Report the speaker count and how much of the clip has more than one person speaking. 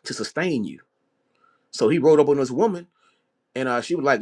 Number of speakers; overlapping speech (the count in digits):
1, no overlap